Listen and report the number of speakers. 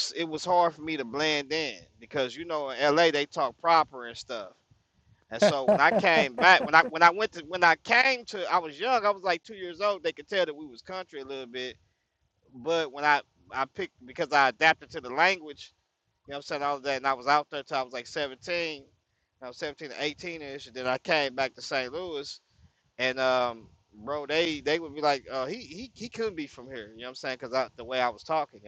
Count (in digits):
1